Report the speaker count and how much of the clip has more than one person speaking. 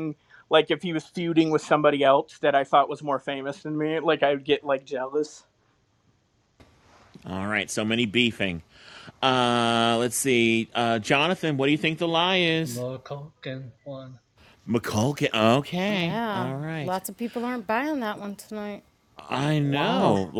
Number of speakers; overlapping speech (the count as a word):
four, about 6%